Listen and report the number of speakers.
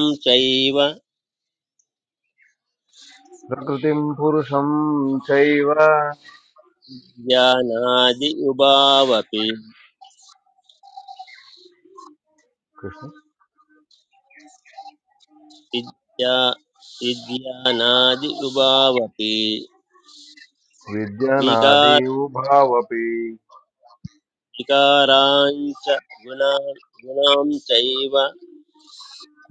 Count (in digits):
2